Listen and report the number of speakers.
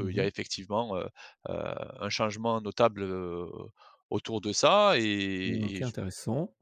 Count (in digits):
2